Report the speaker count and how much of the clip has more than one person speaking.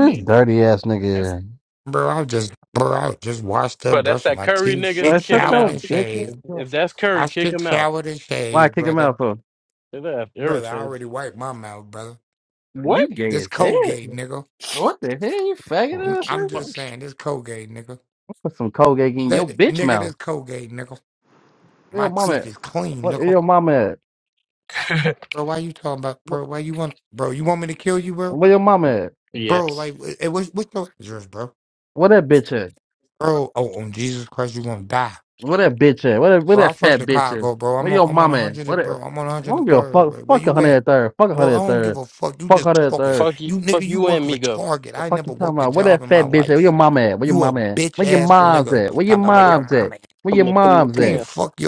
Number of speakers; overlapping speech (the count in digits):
3, about 37%